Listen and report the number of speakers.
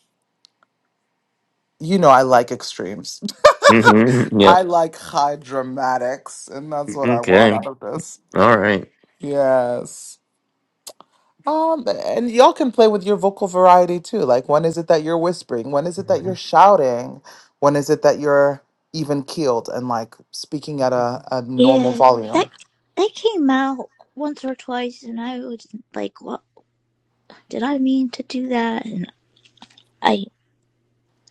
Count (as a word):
three